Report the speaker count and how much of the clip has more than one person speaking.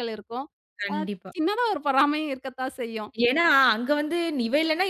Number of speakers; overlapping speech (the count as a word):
two, about 3%